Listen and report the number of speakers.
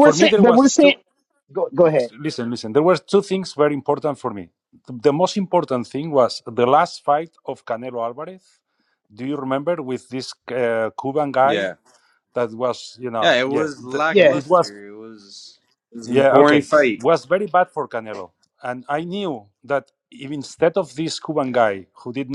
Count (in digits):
3